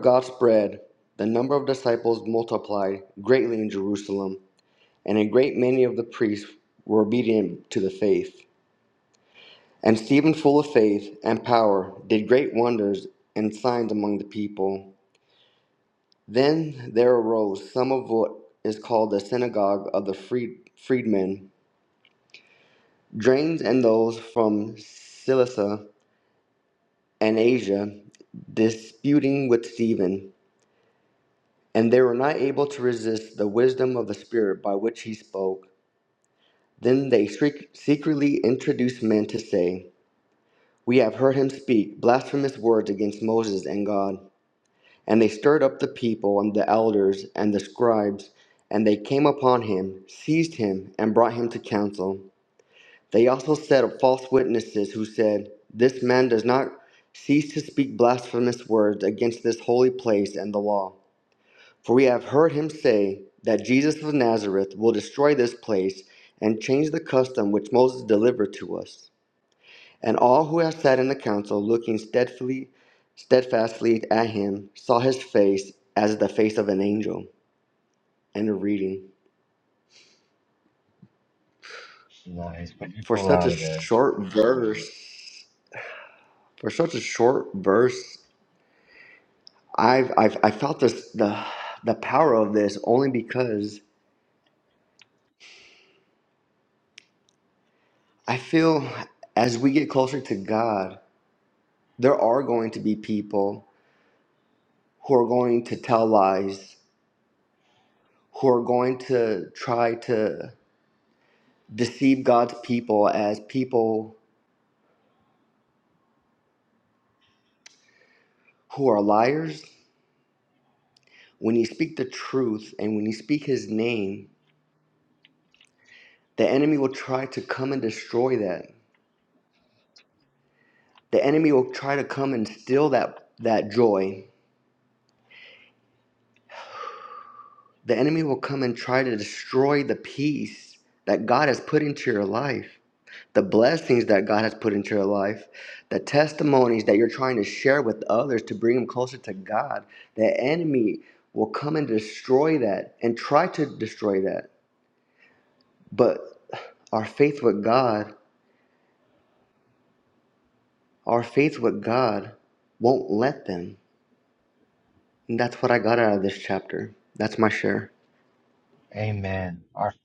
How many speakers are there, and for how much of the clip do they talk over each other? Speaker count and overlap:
two, under 1%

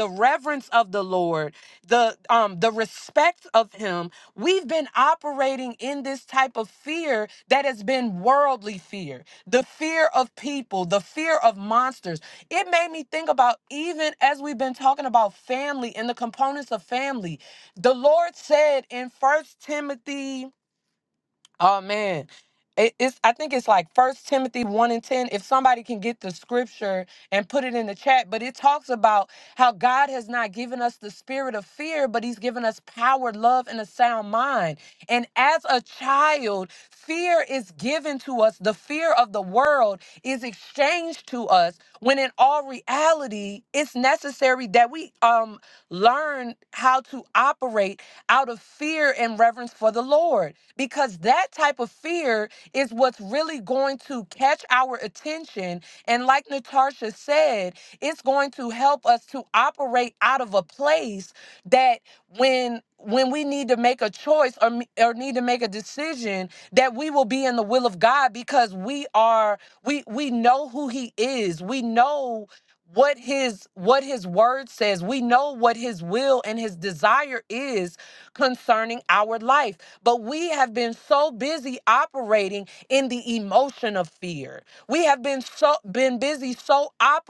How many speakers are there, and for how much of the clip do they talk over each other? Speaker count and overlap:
one, no overlap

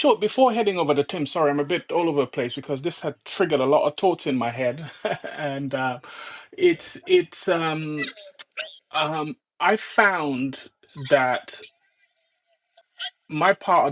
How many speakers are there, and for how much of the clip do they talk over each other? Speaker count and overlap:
one, no overlap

